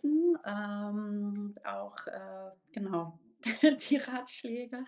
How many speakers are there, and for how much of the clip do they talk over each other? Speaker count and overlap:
1, no overlap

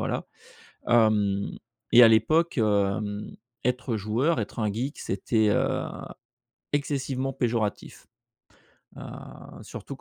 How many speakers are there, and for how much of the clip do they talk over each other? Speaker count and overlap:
1, no overlap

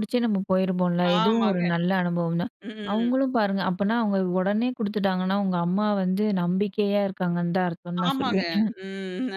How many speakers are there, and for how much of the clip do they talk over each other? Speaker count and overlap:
2, about 13%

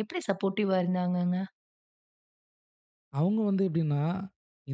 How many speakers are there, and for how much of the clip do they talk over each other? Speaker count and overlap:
2, no overlap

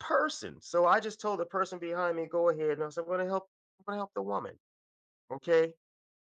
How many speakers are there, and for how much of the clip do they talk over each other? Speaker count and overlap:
1, no overlap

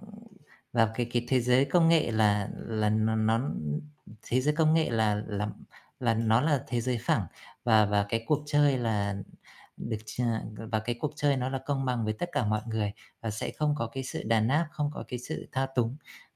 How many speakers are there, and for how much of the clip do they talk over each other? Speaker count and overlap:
1, no overlap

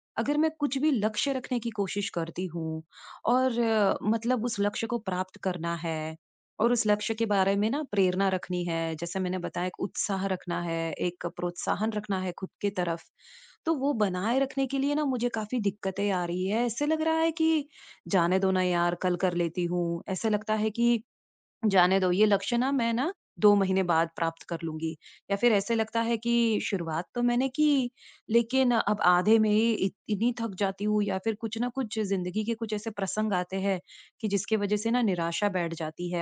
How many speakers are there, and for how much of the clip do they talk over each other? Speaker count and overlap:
1, no overlap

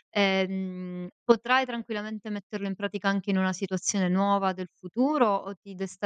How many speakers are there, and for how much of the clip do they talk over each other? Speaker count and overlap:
1, no overlap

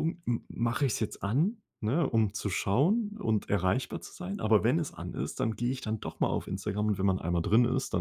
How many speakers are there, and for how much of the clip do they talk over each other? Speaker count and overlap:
1, no overlap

